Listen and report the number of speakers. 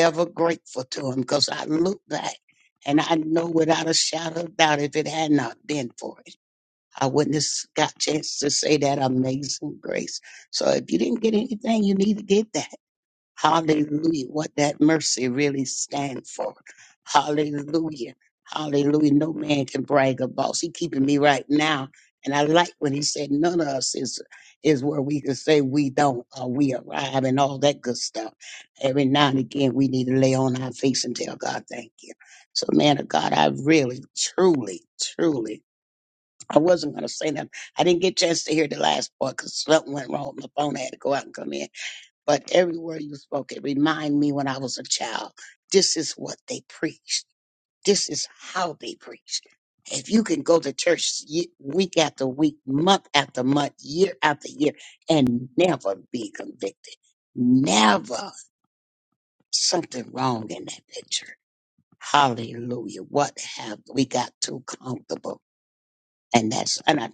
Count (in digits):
1